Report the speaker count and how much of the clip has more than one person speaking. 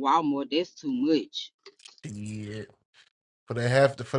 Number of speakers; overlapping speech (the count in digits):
2, no overlap